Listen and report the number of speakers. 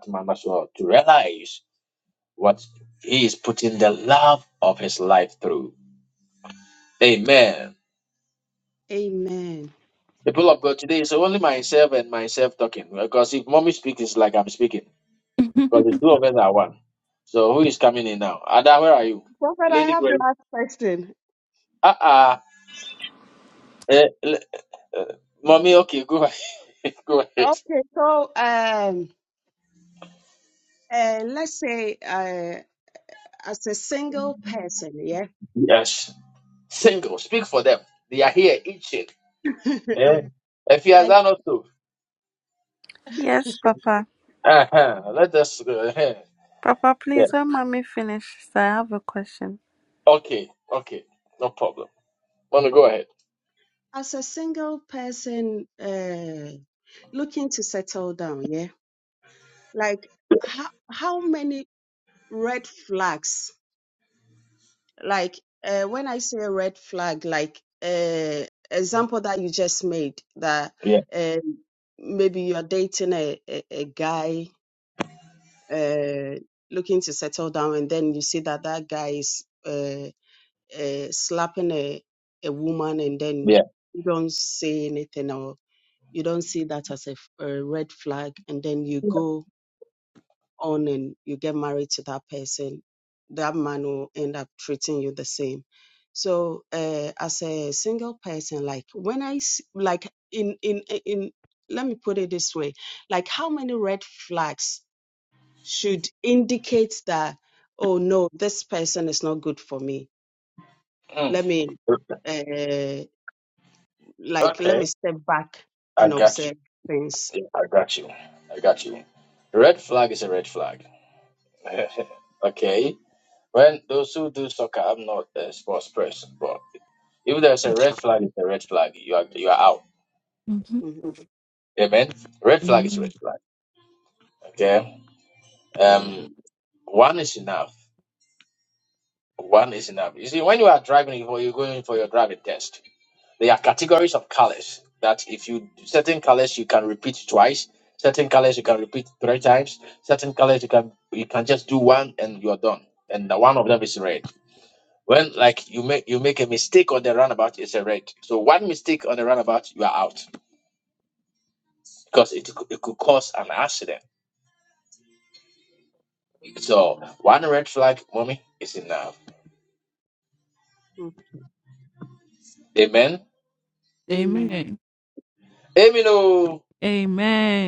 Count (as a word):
four